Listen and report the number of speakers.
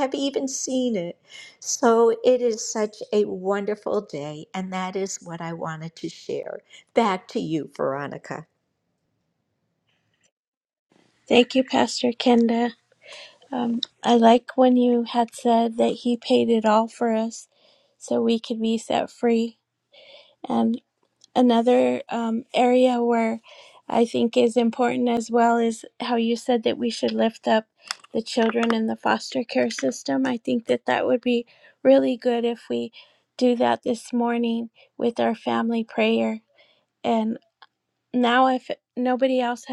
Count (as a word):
two